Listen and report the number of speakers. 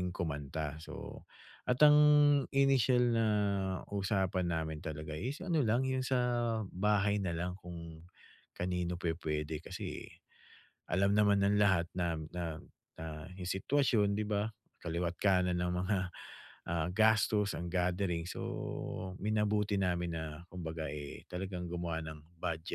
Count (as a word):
one